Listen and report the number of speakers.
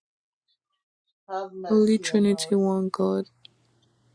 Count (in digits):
2